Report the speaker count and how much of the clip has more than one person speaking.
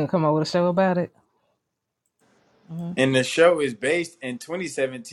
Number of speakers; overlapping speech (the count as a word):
two, no overlap